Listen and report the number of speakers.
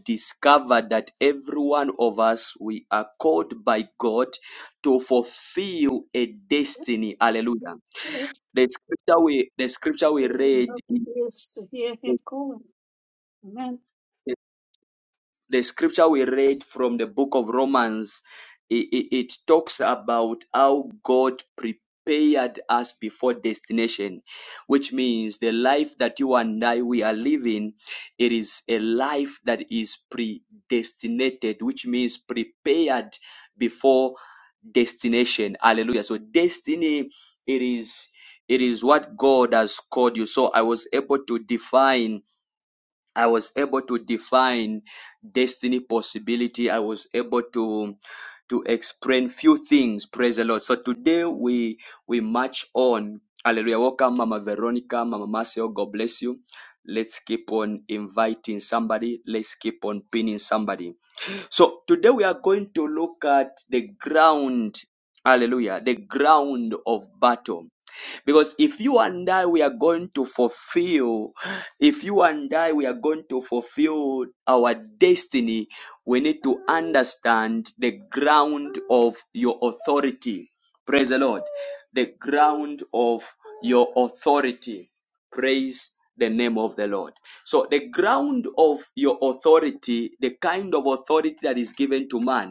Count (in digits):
2